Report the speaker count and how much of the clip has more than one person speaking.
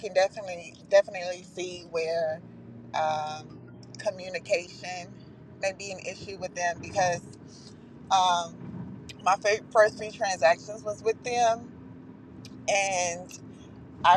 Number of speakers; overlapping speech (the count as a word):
one, no overlap